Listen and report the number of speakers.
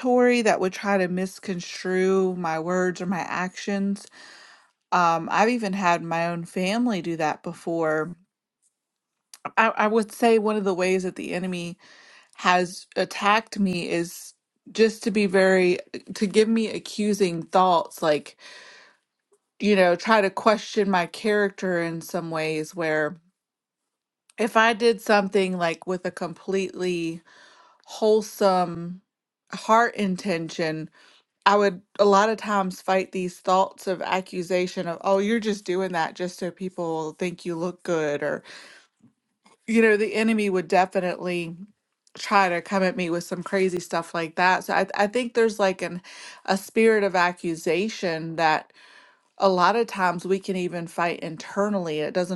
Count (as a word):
one